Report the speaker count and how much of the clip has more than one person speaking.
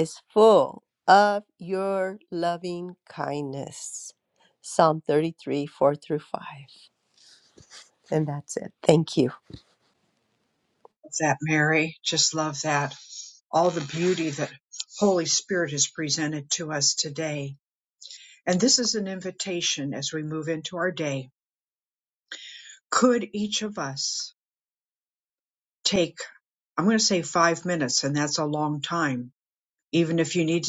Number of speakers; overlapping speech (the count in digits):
2, no overlap